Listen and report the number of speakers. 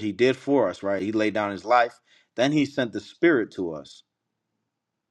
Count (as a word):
one